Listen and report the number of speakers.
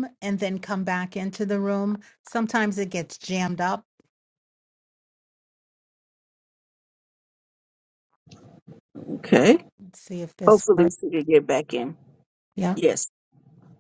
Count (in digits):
2